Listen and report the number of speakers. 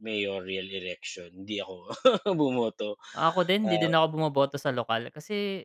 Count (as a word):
two